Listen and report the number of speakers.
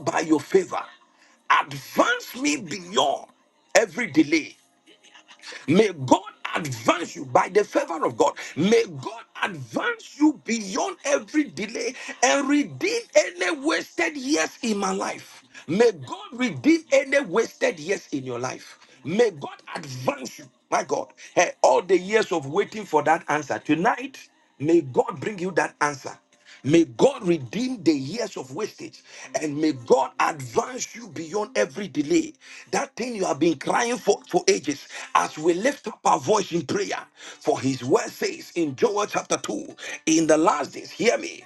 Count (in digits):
1